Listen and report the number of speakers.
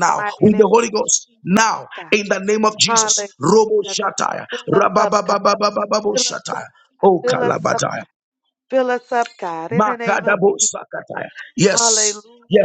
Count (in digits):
2